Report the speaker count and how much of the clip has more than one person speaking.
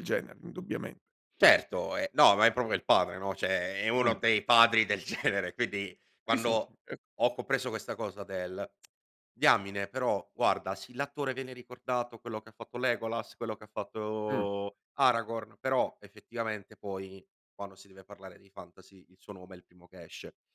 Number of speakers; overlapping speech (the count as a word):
two, about 3%